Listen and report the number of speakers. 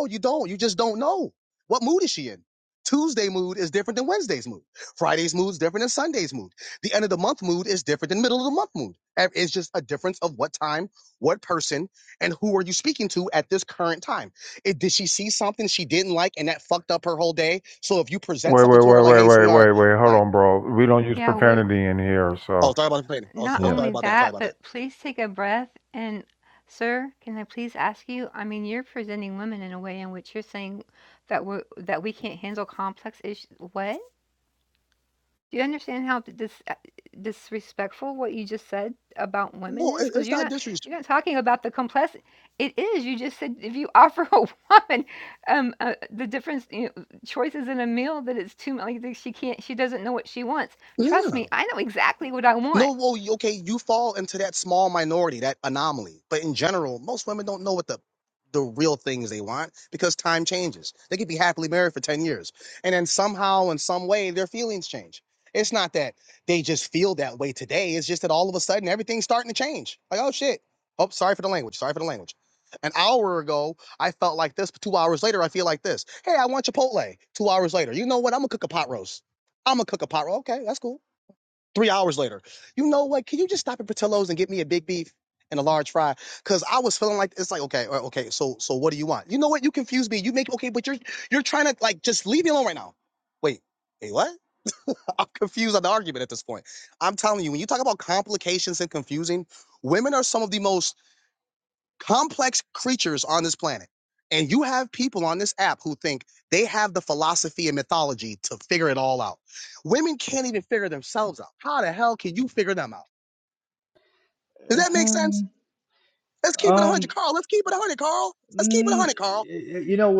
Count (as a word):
four